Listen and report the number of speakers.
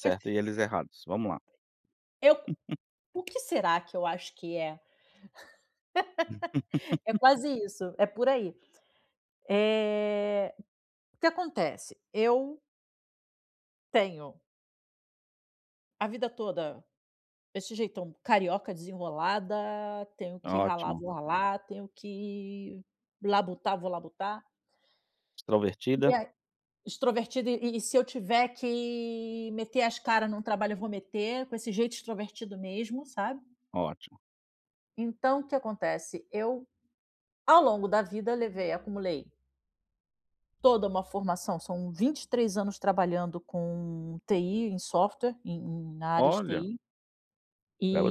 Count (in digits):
2